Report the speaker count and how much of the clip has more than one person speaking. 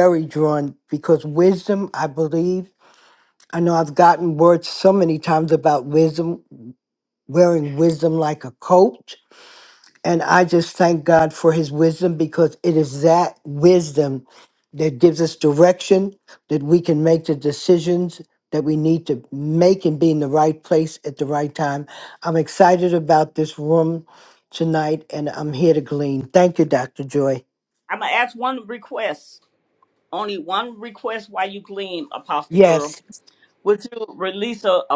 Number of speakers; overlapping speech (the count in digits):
2, about 1%